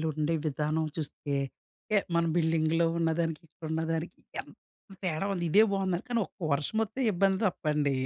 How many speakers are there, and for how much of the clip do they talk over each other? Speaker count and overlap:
1, no overlap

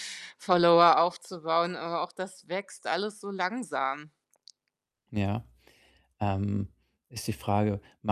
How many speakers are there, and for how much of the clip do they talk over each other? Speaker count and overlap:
2, no overlap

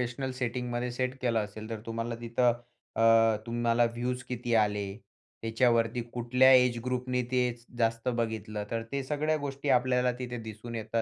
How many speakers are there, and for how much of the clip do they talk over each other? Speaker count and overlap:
1, no overlap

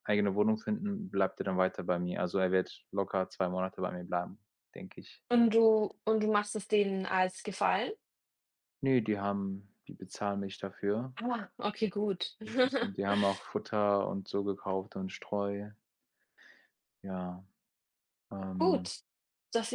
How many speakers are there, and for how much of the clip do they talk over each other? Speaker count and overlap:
2, about 1%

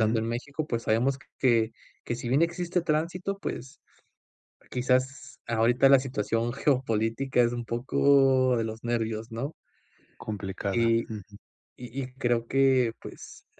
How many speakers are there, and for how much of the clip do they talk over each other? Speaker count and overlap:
2, about 4%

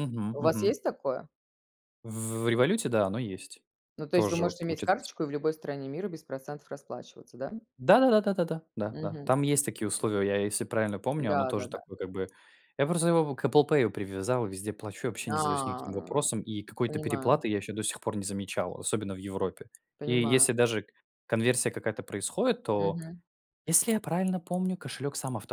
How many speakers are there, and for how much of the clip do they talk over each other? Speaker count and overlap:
2, about 18%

